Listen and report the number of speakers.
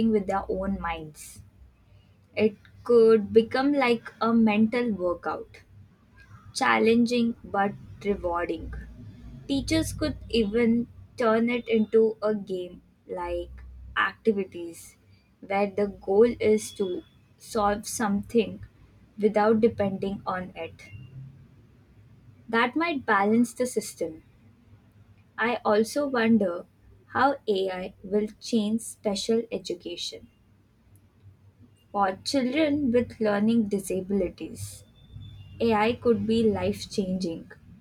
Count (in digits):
1